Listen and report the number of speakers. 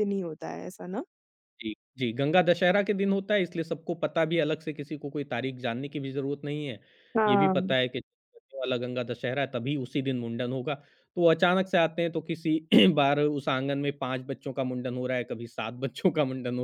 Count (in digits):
2